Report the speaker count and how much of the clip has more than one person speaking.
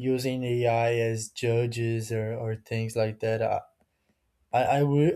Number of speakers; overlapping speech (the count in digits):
1, no overlap